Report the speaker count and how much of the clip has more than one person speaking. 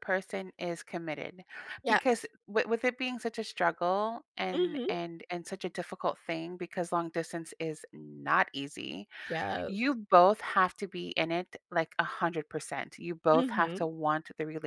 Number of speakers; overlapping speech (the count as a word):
two, about 8%